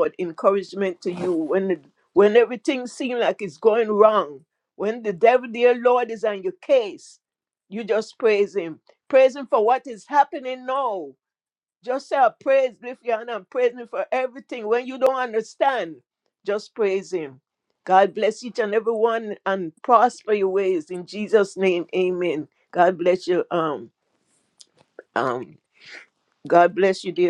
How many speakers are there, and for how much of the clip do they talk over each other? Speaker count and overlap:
1, no overlap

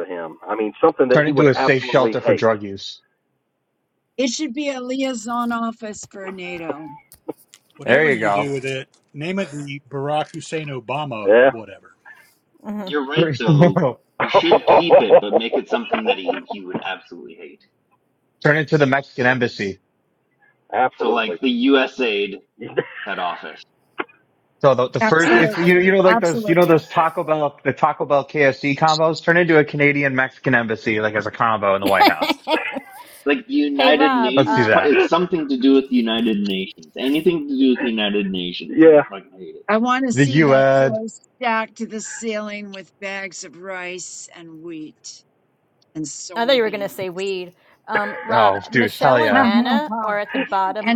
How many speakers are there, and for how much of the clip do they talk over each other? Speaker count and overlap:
6, about 18%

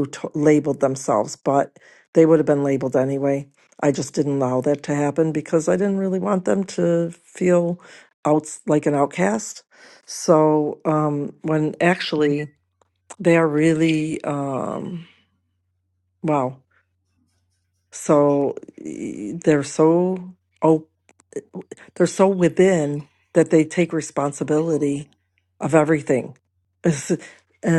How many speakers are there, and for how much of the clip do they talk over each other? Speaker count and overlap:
1, no overlap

